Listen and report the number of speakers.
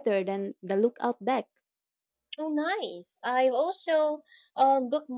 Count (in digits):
2